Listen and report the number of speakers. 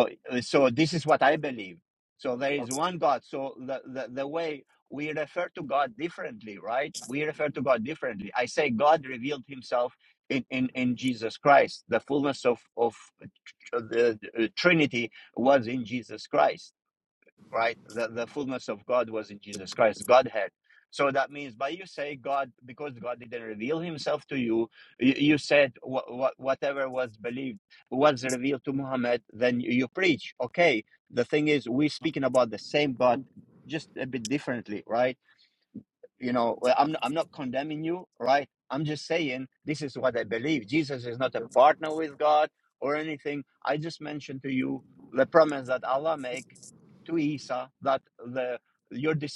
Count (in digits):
1